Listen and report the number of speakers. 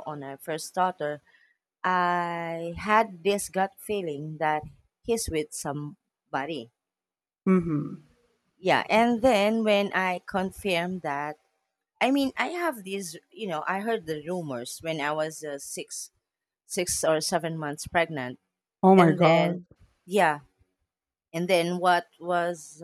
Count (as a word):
two